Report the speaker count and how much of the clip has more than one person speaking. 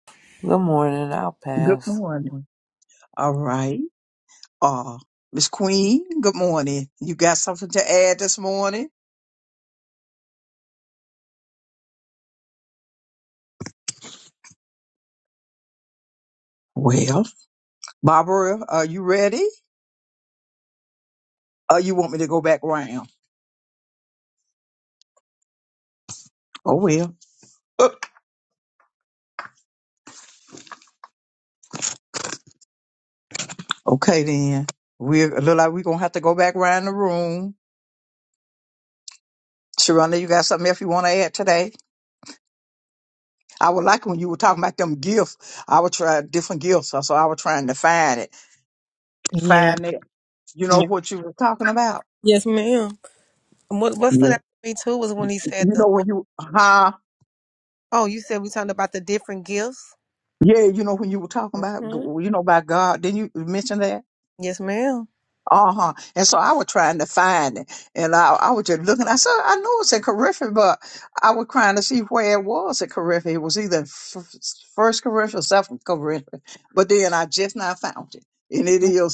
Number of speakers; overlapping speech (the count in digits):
3, about 2%